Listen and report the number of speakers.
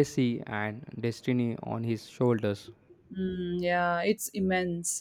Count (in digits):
2